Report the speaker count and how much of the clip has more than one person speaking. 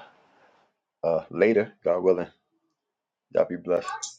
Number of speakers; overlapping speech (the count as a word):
one, no overlap